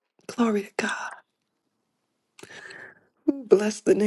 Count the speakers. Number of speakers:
1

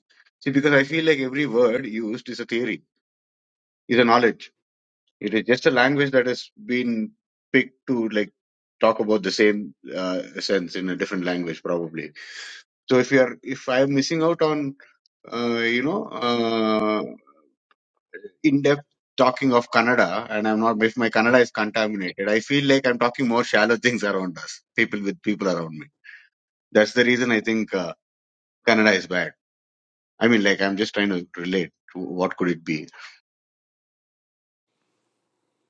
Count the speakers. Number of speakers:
1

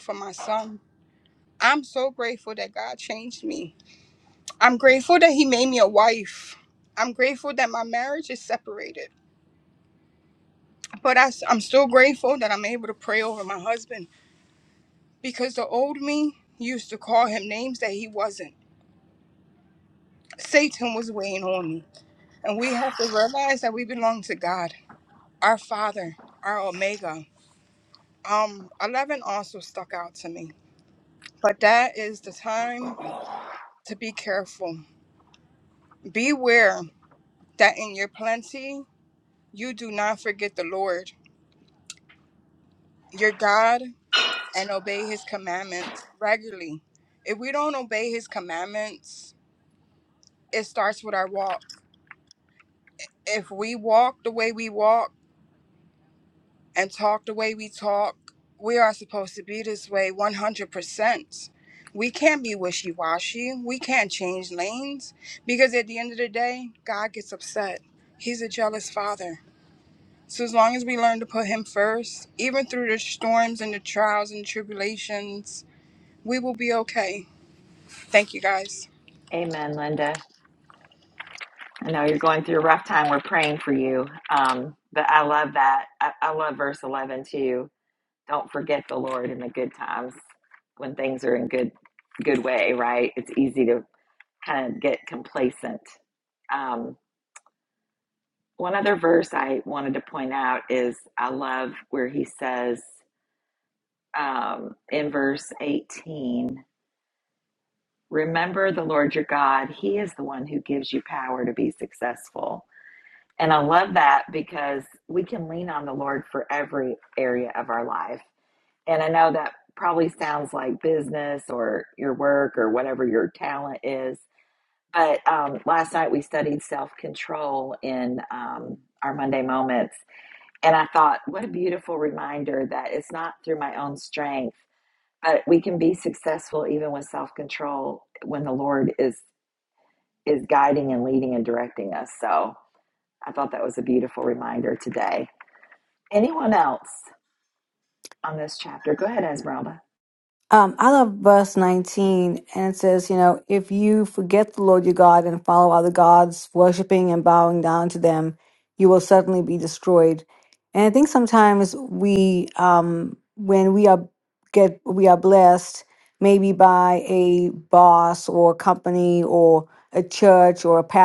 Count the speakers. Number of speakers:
3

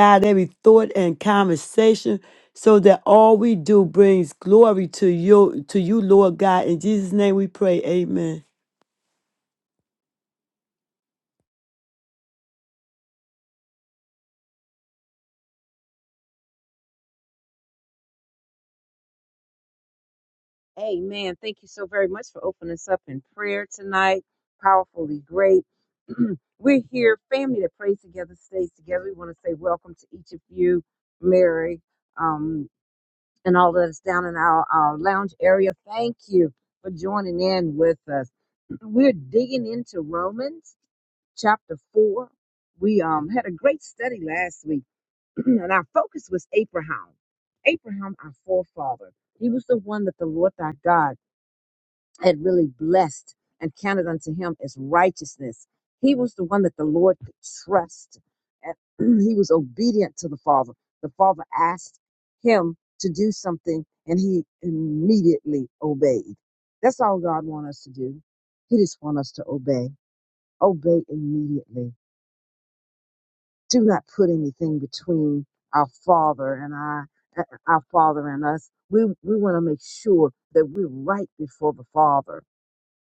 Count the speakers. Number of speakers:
2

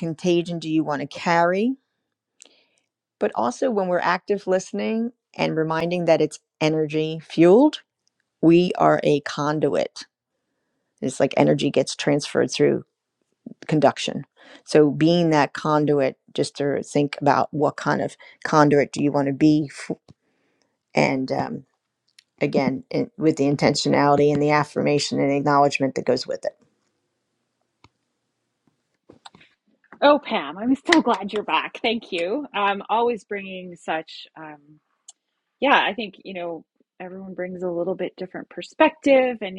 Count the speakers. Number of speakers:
2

